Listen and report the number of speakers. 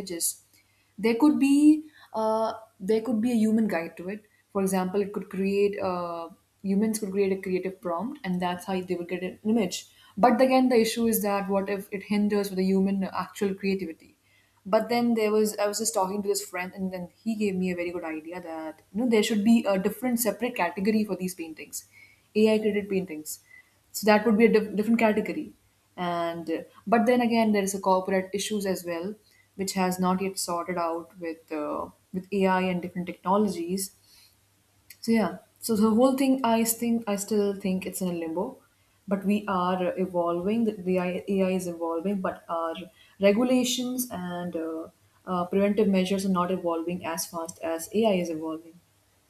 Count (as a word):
one